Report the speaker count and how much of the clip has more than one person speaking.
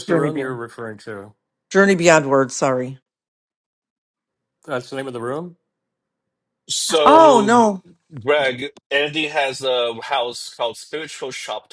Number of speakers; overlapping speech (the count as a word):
three, about 8%